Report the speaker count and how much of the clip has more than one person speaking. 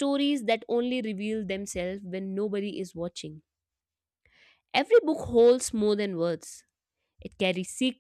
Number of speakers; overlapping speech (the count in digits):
1, no overlap